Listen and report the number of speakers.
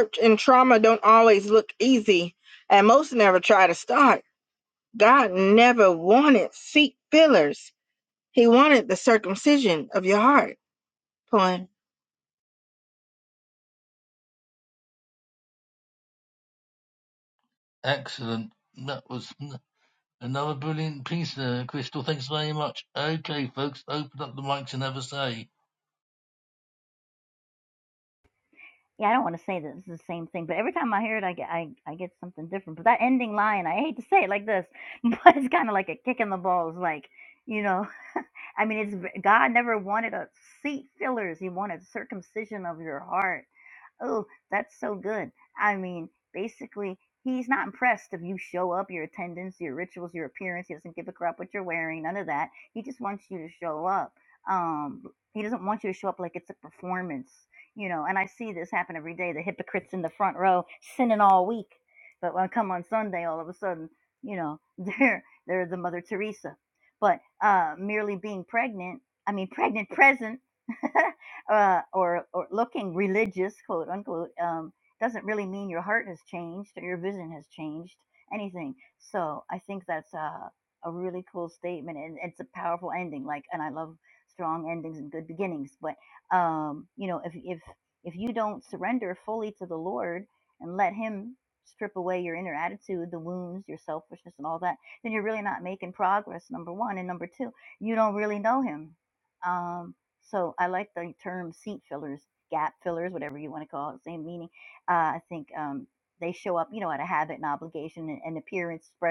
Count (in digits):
3